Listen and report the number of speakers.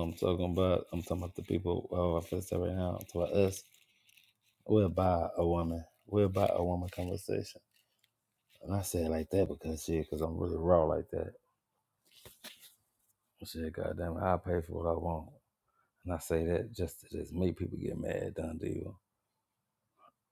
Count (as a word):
one